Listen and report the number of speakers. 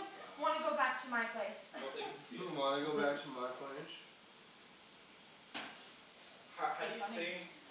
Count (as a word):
three